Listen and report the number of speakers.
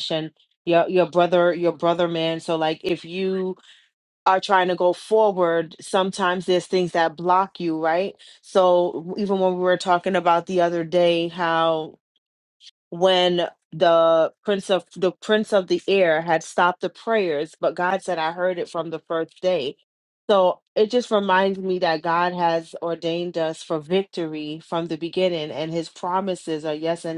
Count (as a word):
one